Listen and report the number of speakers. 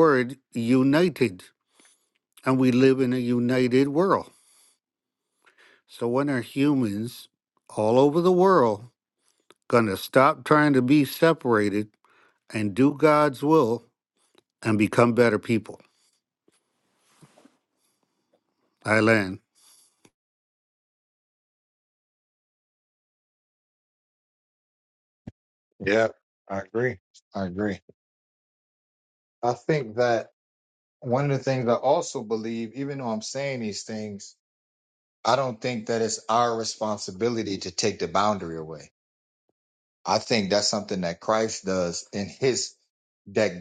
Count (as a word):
two